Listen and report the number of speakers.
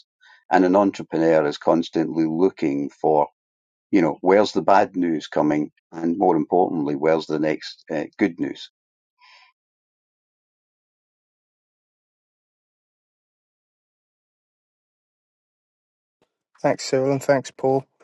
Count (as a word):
two